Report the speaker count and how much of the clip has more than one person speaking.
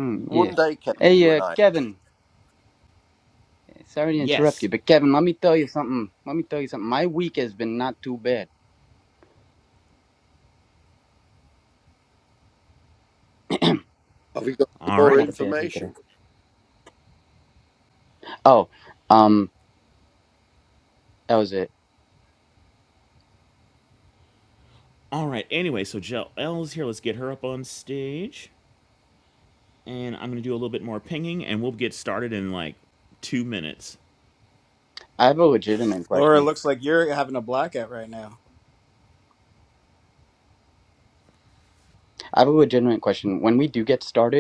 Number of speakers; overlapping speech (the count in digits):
4, about 6%